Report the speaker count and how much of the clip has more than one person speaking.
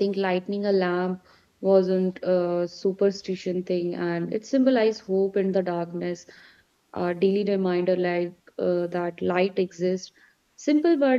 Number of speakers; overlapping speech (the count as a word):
one, no overlap